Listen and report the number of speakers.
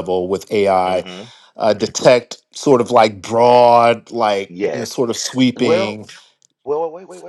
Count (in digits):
2